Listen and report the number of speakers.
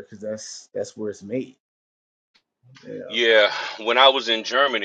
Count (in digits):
2